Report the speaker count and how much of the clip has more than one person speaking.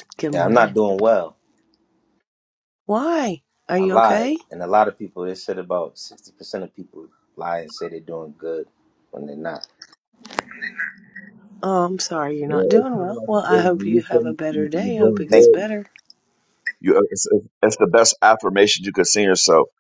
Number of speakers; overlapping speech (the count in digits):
3, about 21%